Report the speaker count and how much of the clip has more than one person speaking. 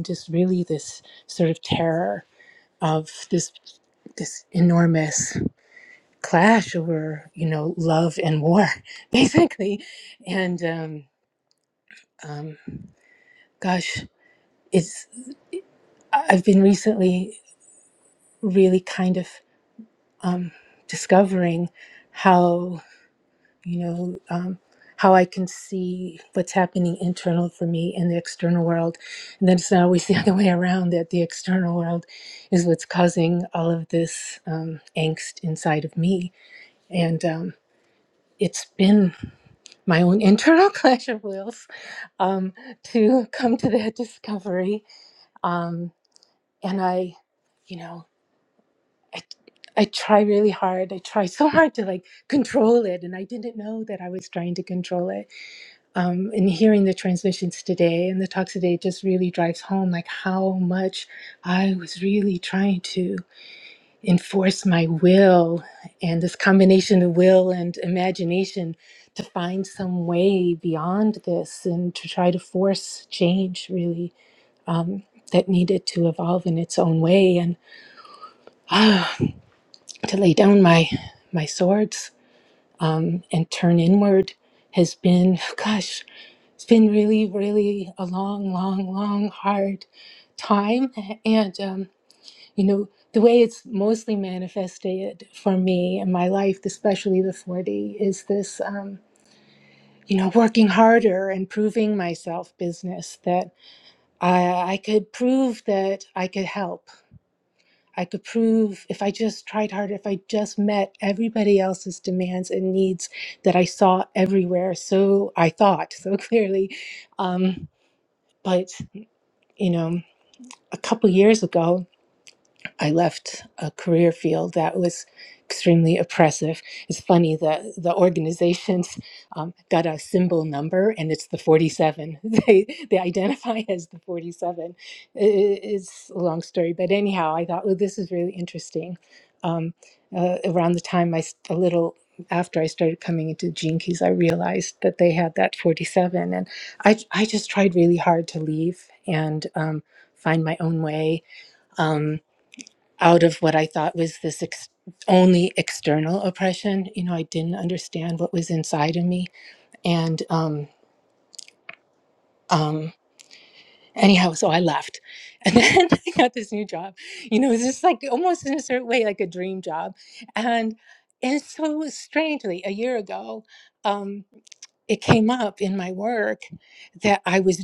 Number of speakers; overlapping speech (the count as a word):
one, no overlap